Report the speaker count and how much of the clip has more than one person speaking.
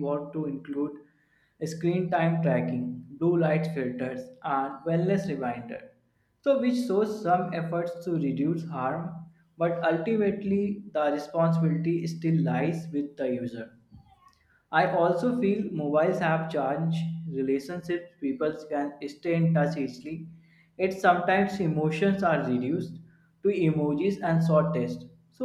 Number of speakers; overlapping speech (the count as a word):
one, no overlap